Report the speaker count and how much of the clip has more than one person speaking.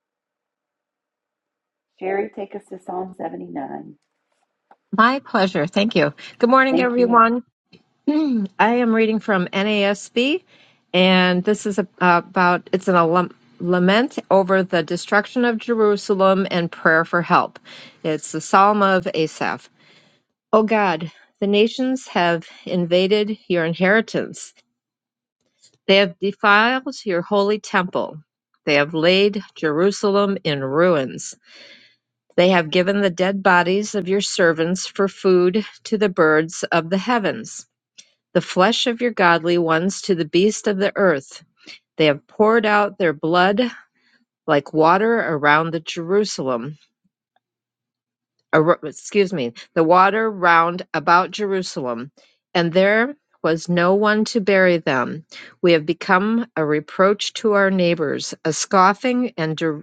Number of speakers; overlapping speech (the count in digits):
2, about 1%